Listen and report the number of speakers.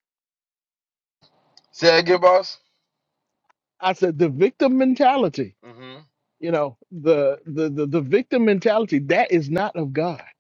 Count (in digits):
2